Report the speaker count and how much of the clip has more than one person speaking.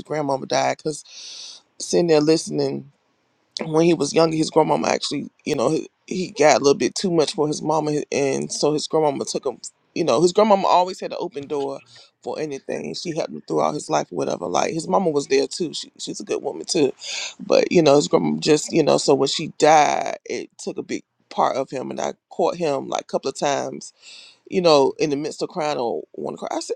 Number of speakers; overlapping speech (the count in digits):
1, no overlap